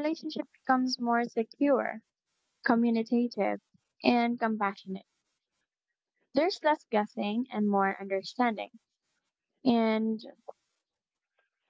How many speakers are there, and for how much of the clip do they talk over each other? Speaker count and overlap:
1, no overlap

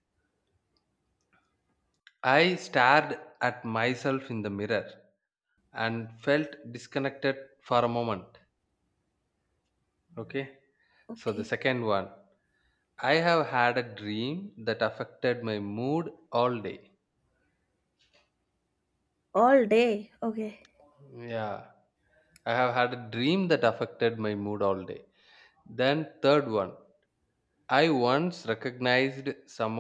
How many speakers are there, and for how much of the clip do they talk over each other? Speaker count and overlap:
2, about 1%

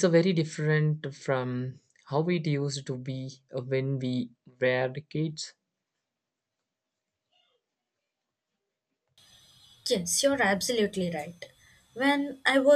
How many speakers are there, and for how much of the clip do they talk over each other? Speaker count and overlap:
2, no overlap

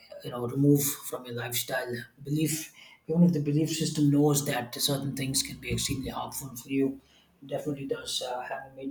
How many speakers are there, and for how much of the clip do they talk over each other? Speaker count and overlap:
1, no overlap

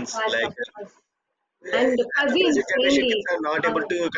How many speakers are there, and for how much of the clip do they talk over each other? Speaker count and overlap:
2, about 53%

